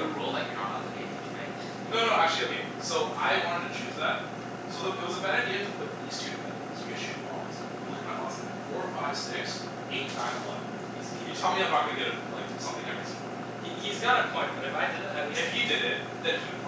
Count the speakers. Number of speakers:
3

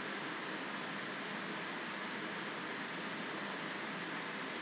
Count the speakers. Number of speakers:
0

